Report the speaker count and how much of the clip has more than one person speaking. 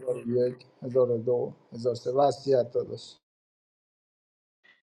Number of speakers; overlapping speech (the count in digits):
1, no overlap